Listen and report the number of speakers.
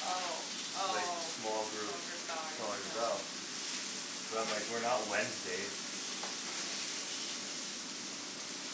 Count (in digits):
2